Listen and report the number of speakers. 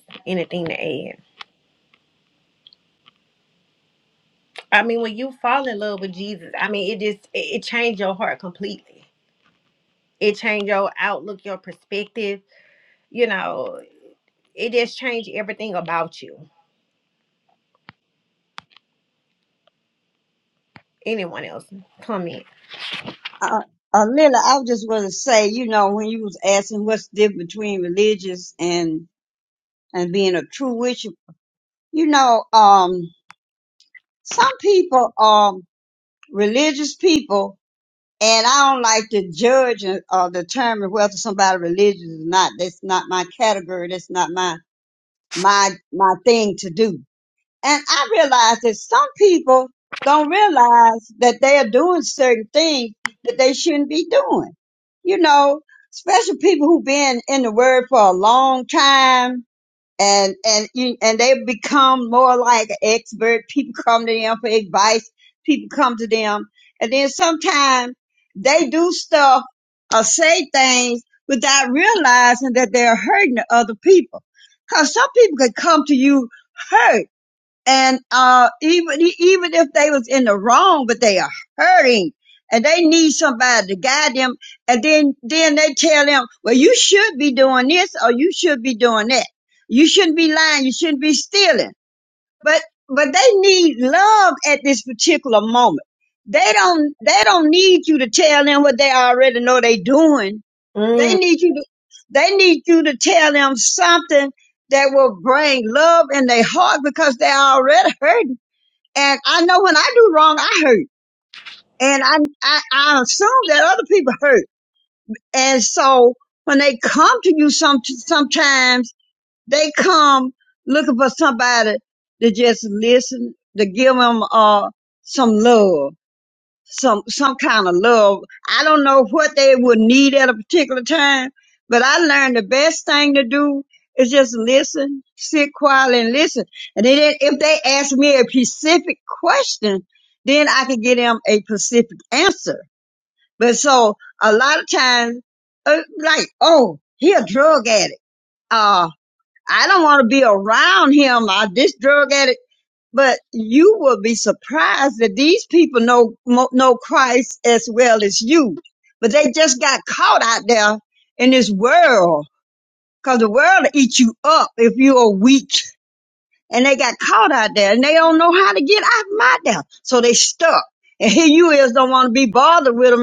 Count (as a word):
two